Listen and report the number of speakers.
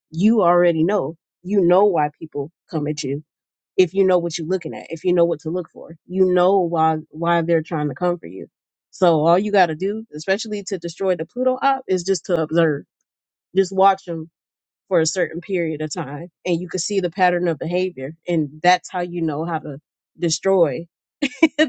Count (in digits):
1